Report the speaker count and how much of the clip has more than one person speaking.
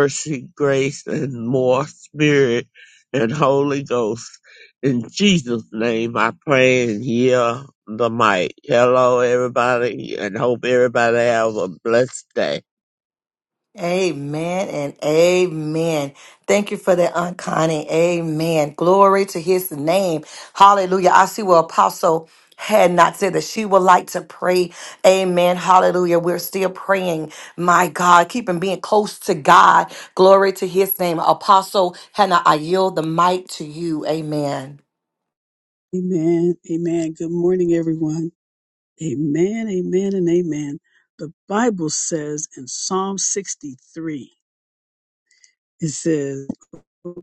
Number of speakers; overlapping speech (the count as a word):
three, no overlap